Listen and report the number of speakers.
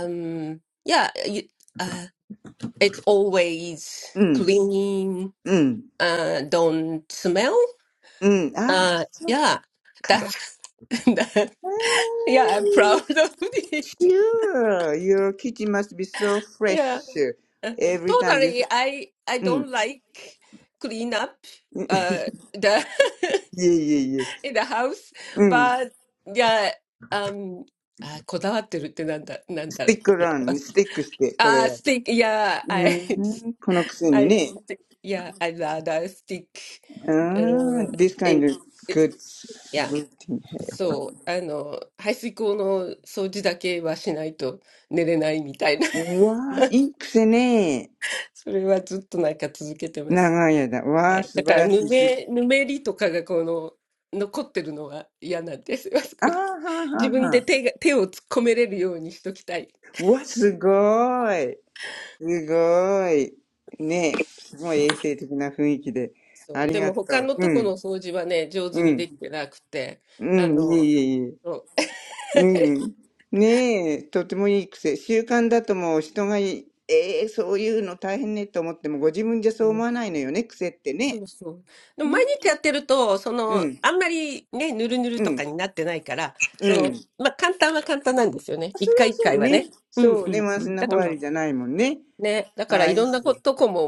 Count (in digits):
2